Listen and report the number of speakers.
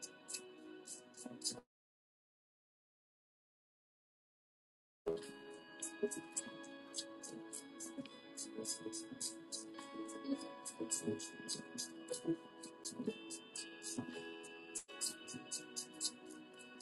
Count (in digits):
0